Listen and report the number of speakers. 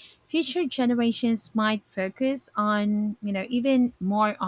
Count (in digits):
1